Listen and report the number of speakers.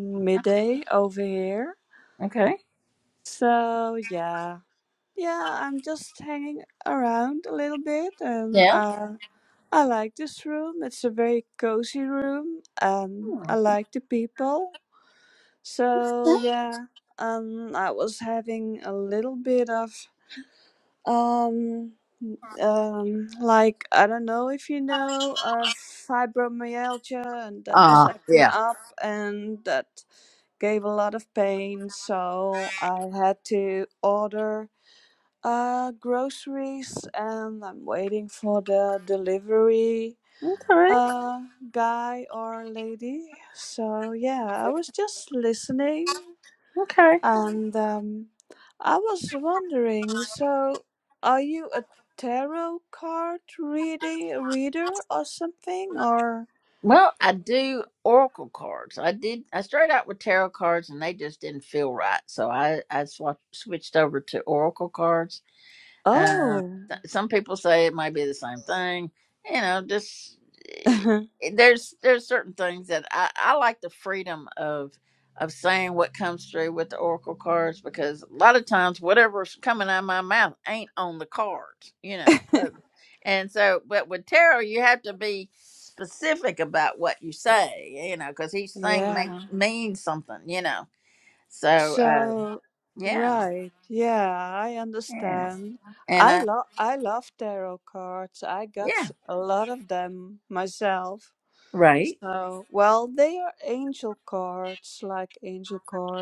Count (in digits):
2